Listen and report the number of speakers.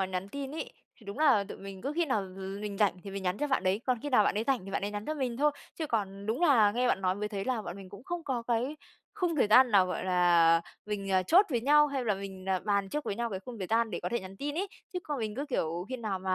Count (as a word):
one